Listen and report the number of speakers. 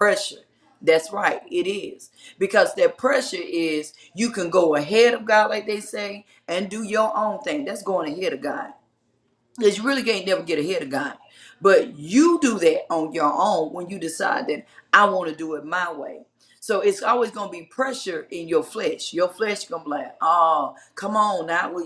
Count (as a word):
one